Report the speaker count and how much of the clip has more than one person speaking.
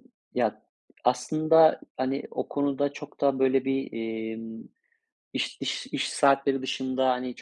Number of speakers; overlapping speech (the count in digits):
1, no overlap